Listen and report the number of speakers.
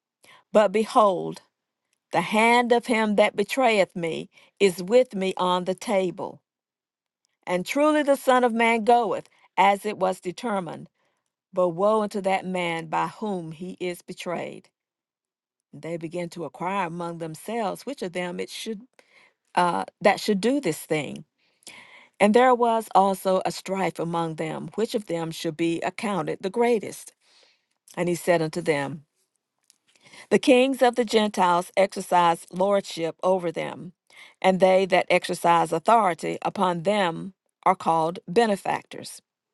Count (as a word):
one